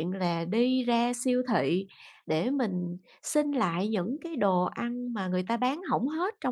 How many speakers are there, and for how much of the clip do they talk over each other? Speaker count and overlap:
1, no overlap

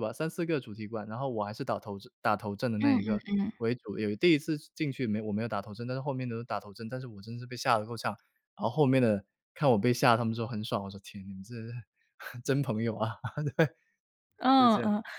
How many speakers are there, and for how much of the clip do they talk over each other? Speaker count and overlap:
2, about 5%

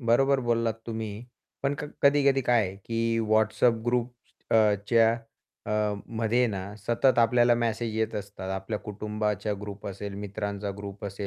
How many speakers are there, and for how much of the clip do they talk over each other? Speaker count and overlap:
1, no overlap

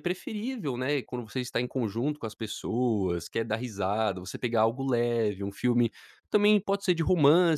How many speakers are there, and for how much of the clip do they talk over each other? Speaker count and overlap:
1, no overlap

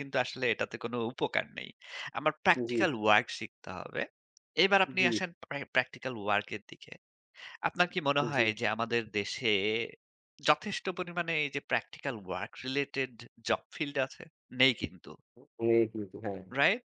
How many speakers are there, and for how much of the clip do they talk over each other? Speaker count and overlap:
2, about 4%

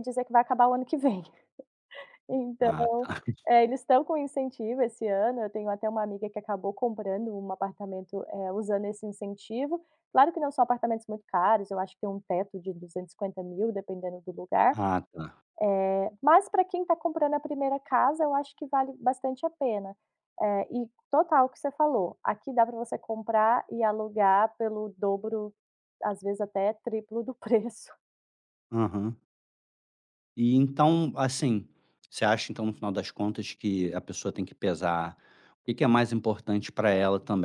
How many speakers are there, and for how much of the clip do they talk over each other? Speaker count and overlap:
2, about 1%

